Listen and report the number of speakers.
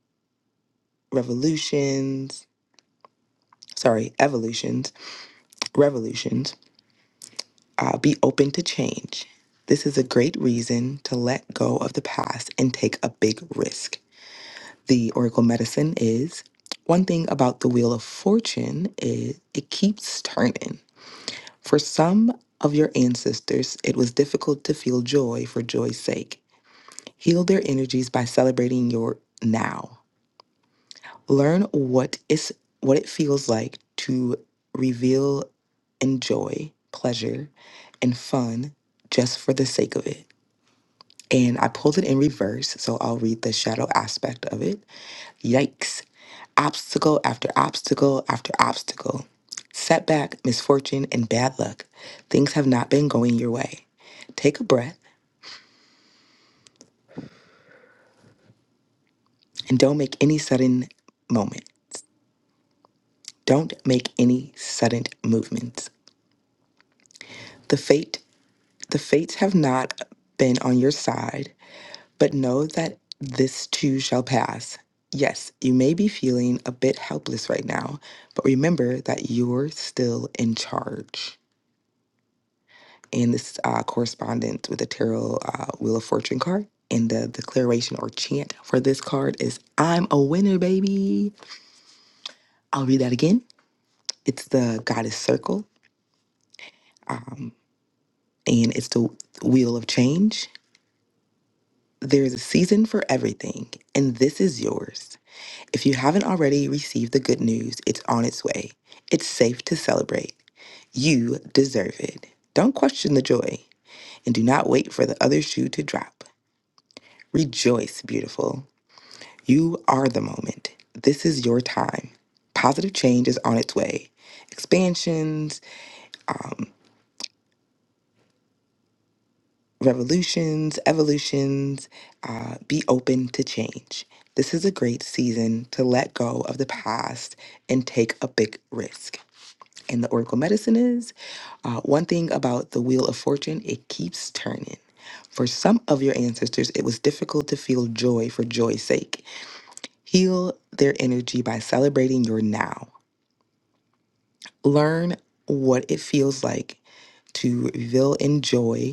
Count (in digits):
1